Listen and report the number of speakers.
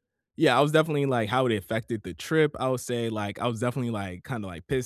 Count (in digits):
1